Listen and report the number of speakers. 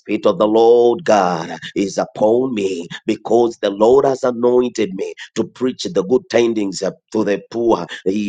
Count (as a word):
one